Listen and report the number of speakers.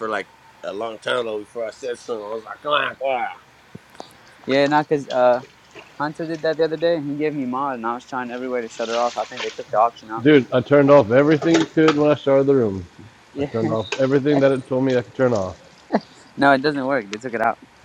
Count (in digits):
3